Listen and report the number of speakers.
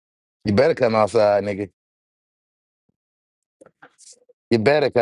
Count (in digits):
1